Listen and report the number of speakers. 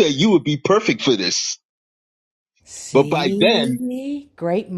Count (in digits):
2